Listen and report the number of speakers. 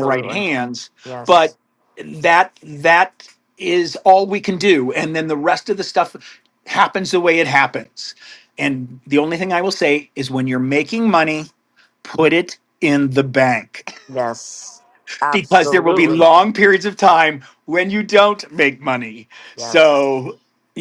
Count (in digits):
2